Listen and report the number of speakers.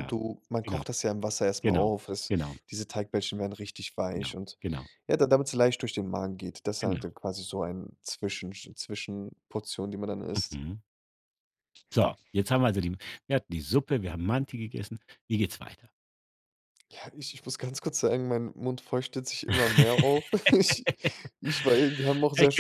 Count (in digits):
2